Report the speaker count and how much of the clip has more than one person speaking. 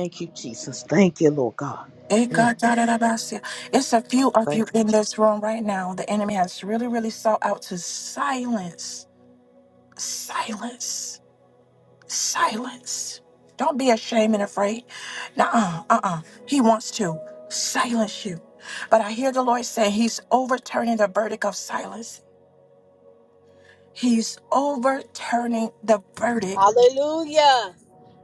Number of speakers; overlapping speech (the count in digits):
3, about 2%